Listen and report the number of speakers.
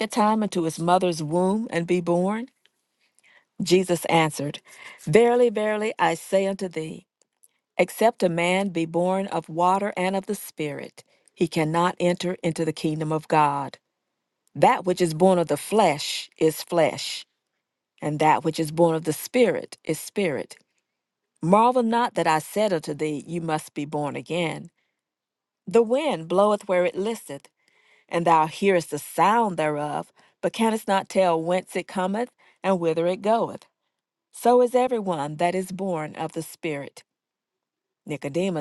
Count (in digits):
1